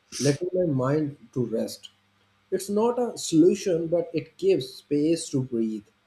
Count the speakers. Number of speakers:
1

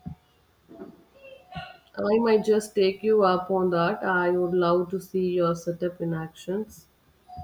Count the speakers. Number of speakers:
1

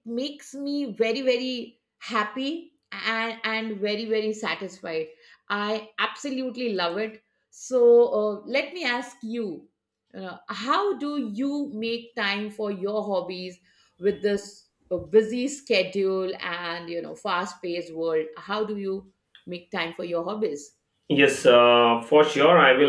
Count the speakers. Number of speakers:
2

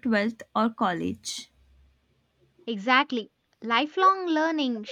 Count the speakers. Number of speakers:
2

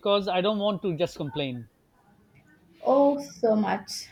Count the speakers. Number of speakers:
2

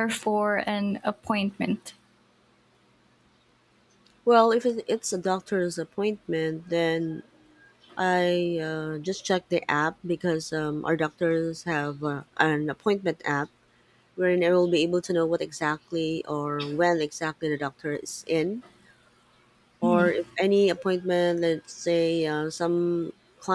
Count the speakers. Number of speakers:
2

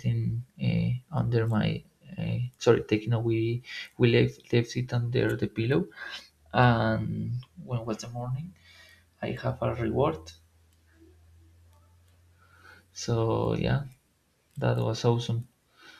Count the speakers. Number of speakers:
1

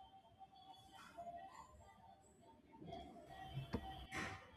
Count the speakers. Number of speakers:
0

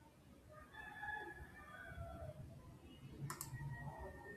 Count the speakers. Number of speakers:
0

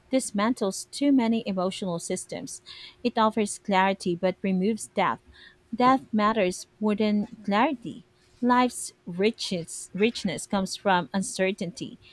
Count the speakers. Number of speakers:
1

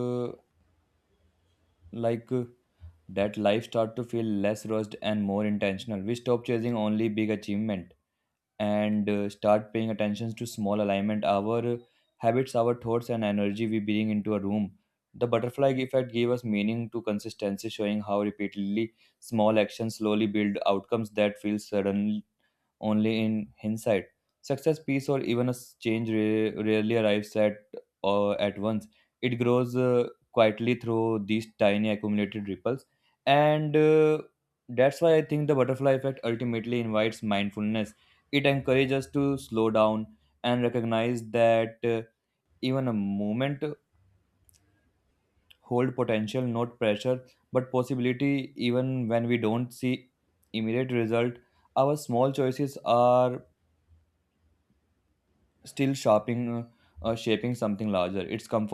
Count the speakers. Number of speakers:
1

